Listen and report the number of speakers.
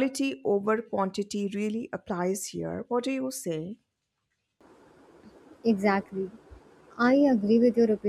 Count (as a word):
two